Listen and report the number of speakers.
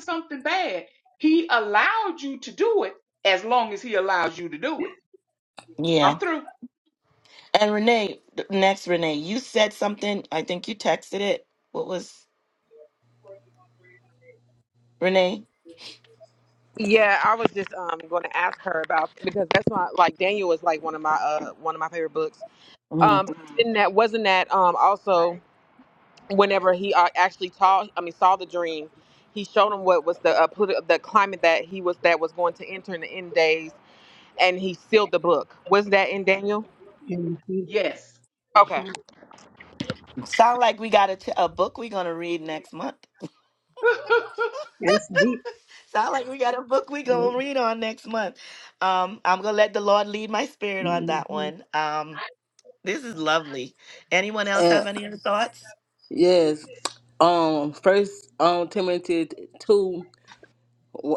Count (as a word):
five